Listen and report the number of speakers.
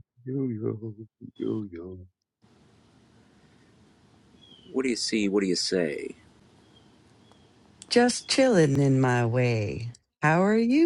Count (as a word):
three